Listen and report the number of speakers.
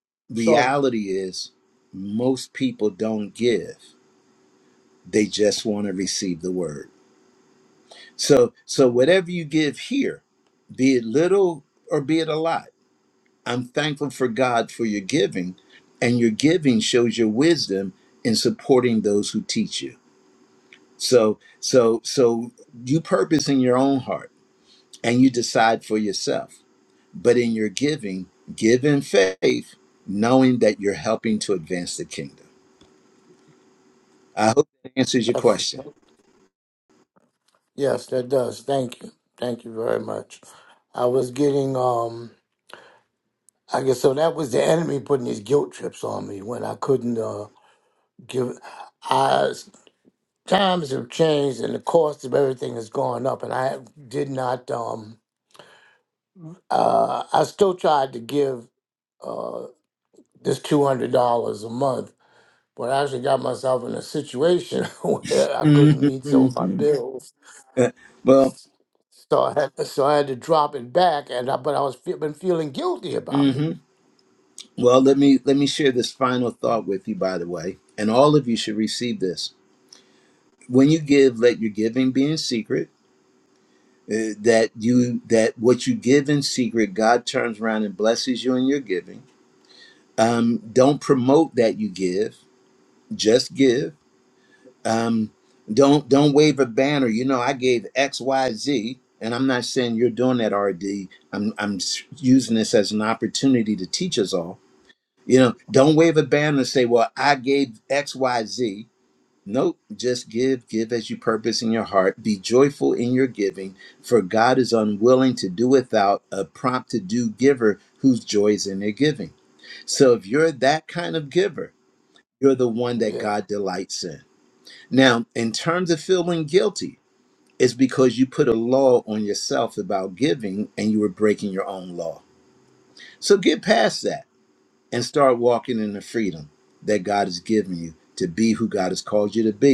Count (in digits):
2